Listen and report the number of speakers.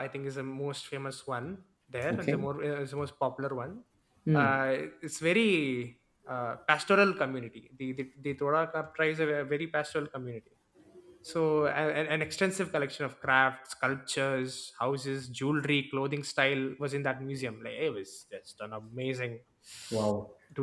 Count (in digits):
2